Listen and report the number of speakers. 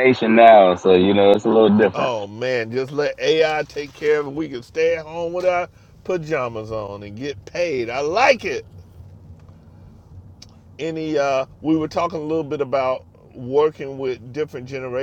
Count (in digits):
2